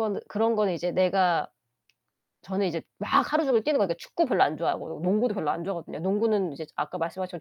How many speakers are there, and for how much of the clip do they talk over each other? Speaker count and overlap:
1, no overlap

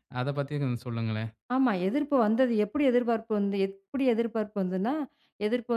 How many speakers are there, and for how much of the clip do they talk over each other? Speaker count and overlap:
2, no overlap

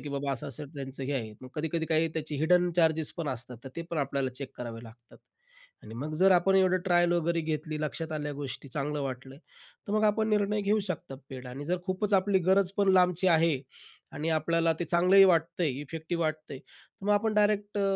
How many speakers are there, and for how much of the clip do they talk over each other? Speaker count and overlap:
1, no overlap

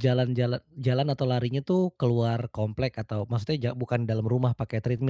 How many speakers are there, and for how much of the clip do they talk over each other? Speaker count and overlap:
1, no overlap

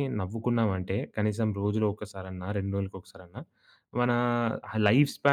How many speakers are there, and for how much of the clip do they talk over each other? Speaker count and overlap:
1, no overlap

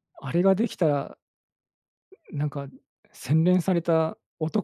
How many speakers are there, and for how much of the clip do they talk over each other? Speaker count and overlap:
1, no overlap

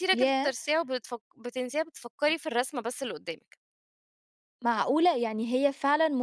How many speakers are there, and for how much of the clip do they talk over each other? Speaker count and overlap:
2, about 7%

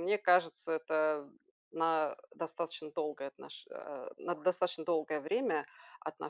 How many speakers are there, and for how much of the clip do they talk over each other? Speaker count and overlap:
1, no overlap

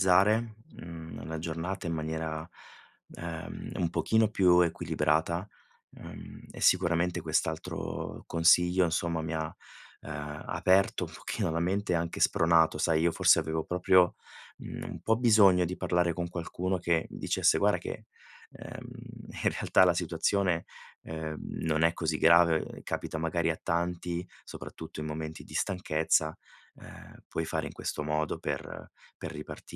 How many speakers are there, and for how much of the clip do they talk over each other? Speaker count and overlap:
1, no overlap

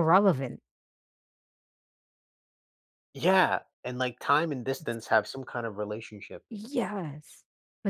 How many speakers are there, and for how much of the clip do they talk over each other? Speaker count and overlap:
2, no overlap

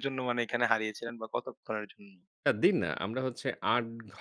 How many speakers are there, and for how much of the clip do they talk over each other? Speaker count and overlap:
2, no overlap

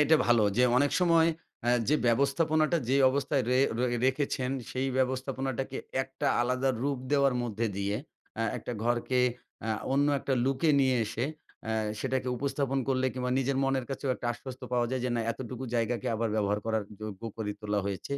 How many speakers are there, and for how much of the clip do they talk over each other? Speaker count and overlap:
1, no overlap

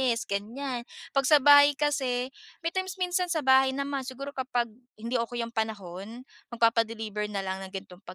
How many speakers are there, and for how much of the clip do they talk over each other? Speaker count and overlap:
1, no overlap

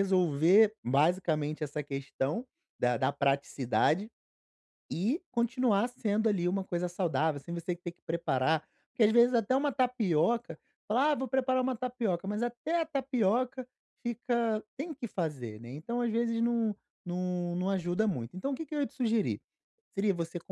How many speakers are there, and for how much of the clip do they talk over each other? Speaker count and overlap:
1, no overlap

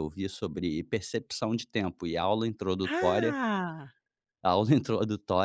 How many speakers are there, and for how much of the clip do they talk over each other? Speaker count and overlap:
2, about 9%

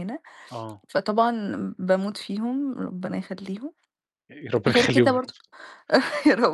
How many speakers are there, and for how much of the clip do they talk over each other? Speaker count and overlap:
2, about 9%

